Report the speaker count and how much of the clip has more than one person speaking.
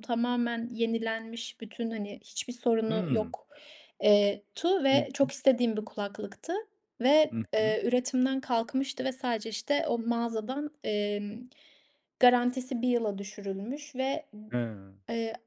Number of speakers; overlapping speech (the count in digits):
2, about 8%